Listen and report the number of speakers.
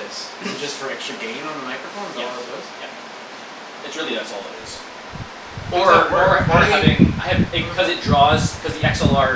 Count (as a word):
two